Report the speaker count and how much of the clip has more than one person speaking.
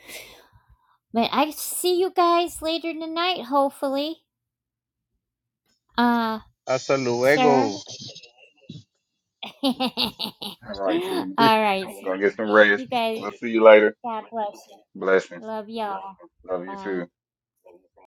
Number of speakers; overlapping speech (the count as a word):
three, about 6%